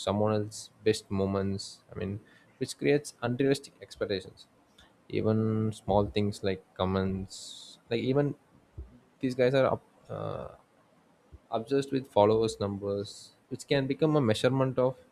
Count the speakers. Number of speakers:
1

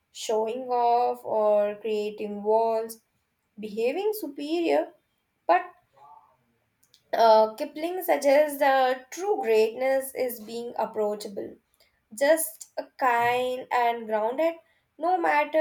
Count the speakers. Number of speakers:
1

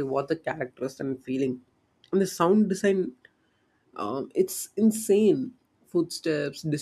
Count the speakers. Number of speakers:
1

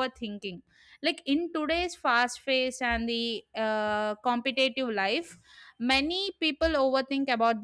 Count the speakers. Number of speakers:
1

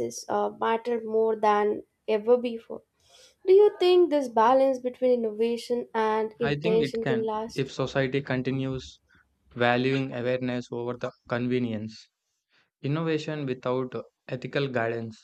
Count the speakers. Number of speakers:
2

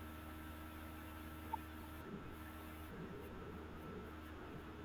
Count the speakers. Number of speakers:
0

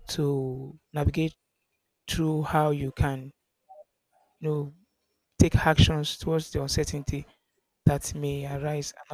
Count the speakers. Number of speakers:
1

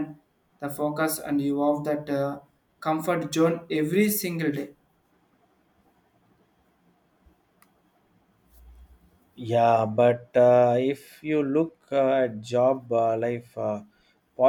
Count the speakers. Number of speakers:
2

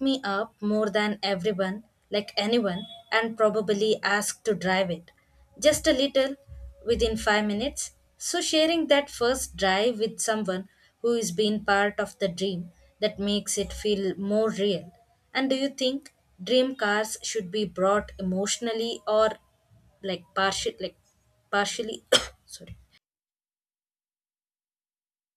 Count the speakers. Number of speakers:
1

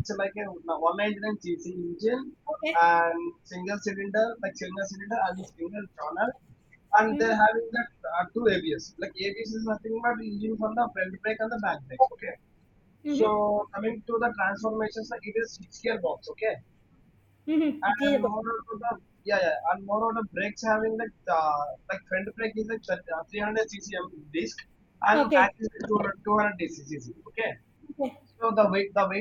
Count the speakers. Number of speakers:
2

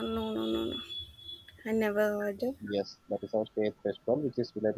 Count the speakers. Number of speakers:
2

